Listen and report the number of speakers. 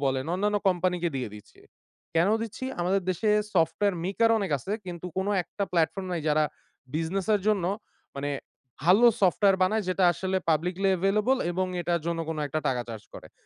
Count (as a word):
one